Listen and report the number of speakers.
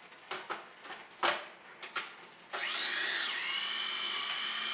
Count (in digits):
0